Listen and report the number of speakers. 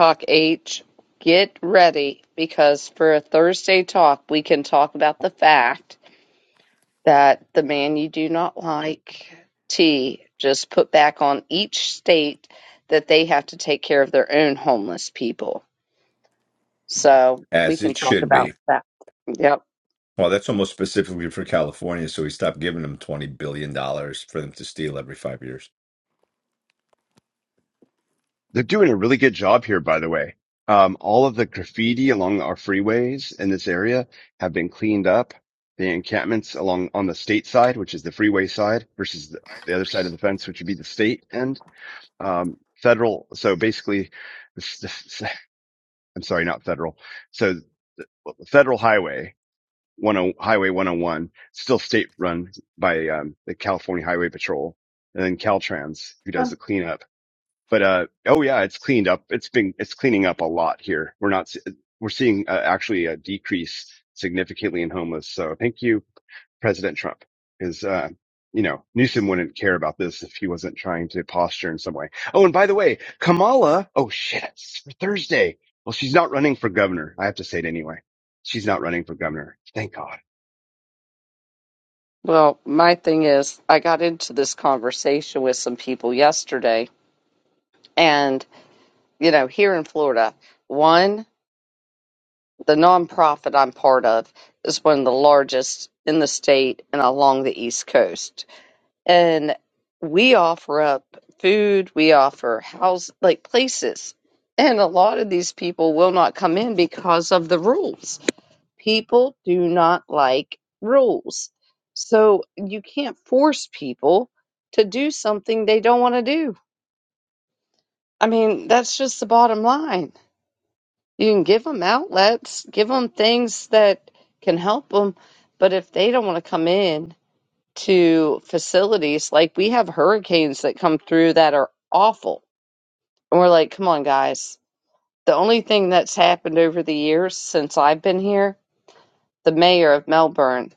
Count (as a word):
three